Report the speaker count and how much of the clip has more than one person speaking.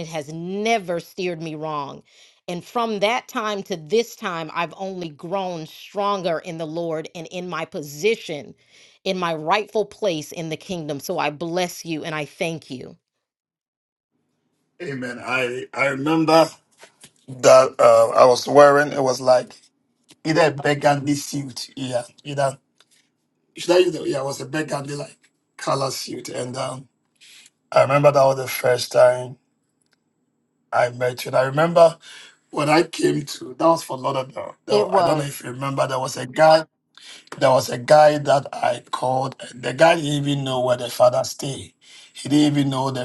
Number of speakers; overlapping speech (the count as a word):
two, about 1%